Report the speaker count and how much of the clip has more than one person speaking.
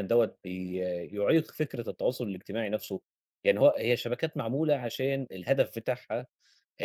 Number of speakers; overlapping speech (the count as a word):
one, no overlap